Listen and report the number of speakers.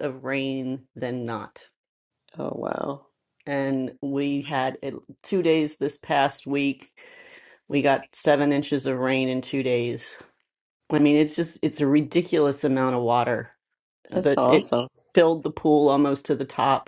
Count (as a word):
two